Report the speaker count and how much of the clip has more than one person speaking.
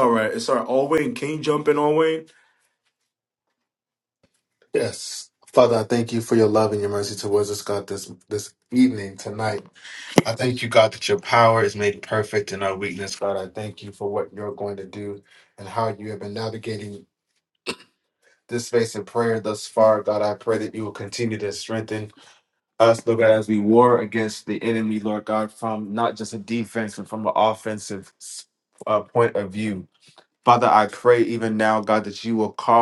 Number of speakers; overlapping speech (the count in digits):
2, no overlap